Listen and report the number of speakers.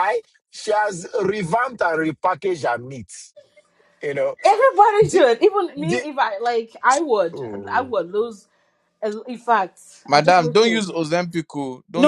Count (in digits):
3